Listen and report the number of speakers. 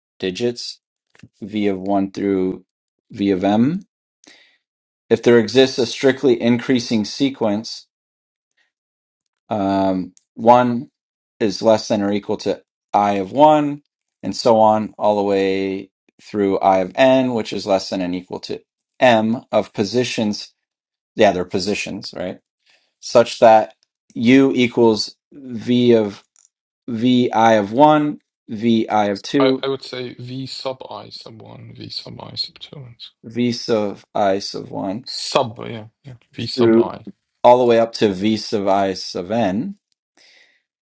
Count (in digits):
2